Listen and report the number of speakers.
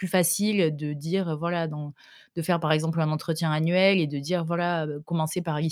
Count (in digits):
1